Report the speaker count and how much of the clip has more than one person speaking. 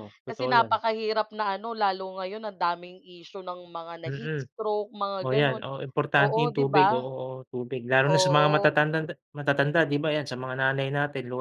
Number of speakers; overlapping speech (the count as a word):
two, about 24%